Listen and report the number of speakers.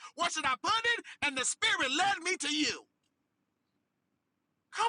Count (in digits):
1